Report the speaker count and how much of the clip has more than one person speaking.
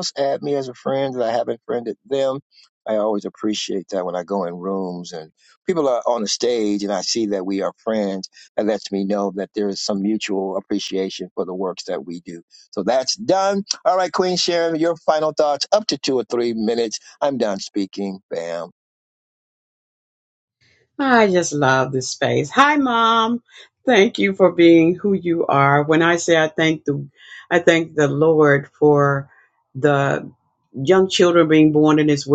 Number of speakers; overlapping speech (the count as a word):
two, no overlap